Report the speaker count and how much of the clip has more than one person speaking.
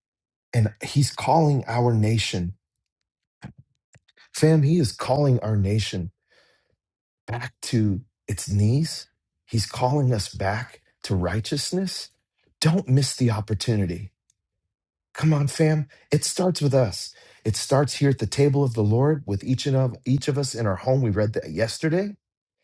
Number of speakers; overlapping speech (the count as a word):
one, no overlap